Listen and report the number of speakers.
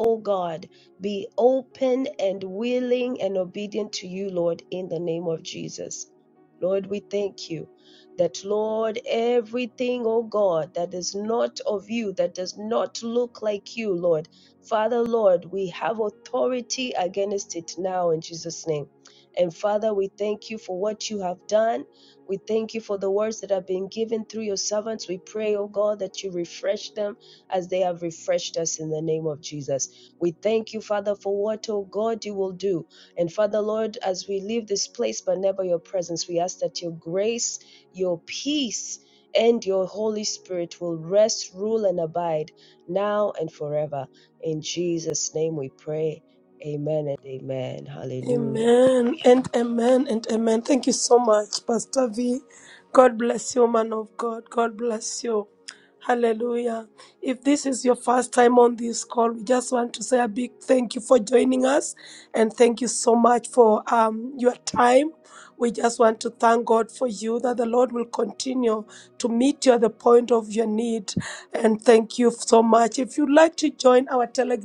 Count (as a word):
two